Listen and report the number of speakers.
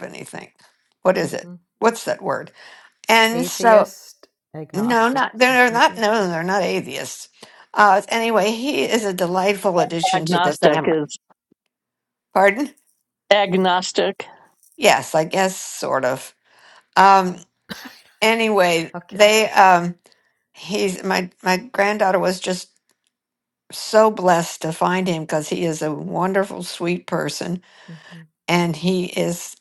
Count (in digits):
3